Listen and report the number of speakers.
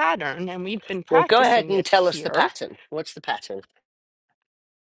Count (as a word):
two